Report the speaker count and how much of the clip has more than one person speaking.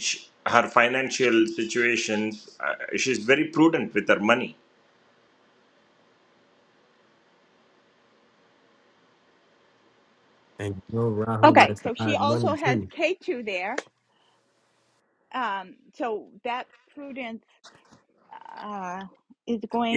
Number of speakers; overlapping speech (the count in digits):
3, about 8%